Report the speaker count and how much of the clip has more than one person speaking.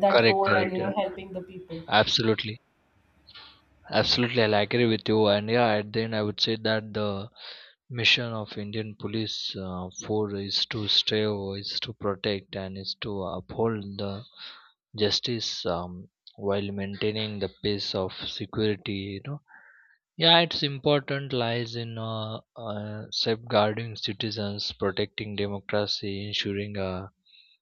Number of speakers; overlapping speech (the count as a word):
two, about 3%